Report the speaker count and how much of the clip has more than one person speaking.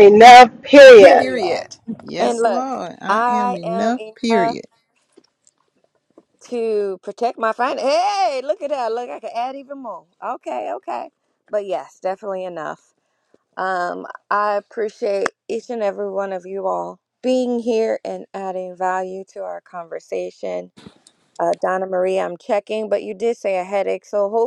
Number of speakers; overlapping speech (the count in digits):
3, about 11%